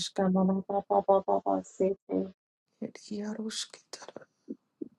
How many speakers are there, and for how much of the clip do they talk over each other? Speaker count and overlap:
two, about 5%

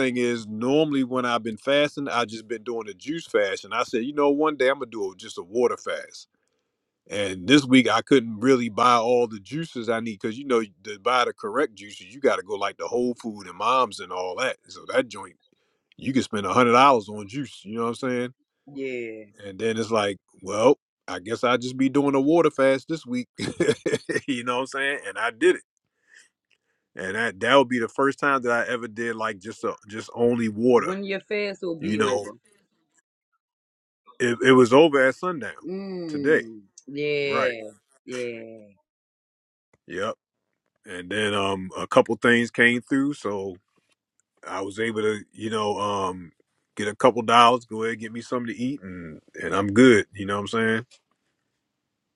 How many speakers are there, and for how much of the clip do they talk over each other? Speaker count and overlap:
two, about 2%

